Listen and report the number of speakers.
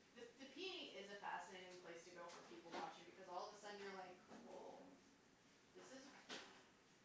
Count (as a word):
one